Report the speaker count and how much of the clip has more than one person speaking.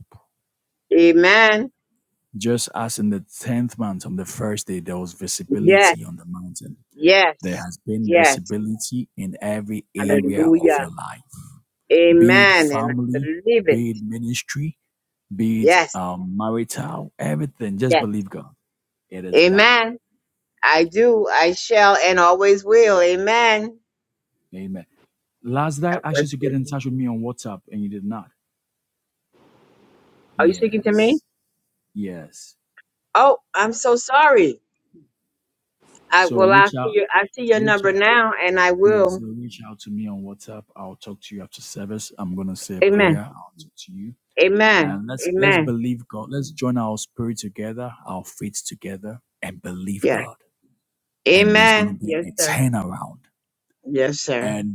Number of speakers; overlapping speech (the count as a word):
two, about 18%